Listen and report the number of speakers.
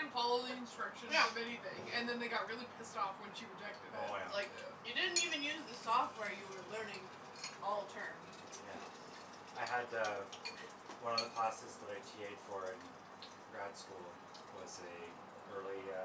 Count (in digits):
3